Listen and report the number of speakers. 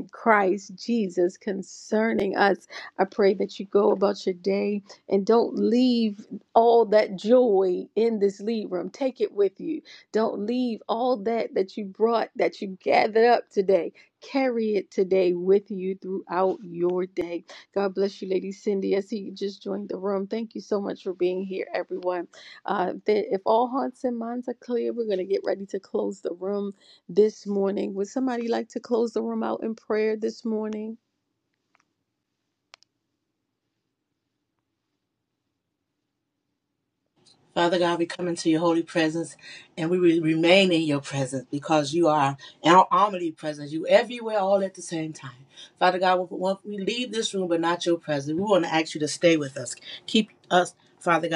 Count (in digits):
2